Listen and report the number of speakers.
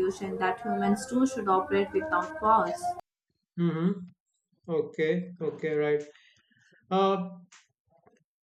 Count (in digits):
2